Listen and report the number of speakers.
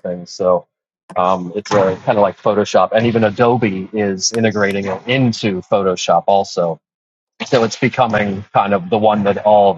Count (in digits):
1